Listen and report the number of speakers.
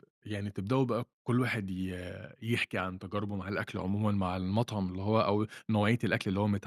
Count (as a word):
one